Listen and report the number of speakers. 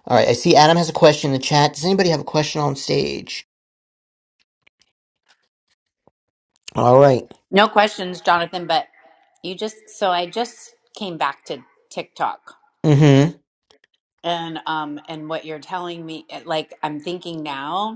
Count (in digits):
2